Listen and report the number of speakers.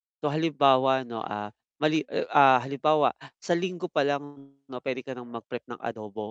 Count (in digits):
1